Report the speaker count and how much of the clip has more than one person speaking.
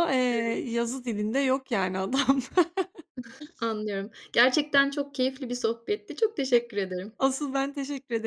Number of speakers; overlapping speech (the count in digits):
2, no overlap